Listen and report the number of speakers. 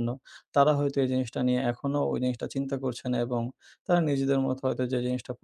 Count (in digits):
1